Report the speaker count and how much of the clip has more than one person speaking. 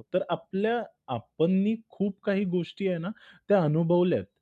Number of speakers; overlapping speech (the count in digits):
1, no overlap